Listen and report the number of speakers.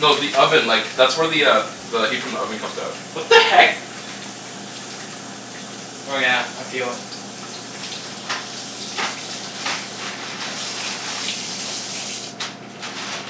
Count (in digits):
2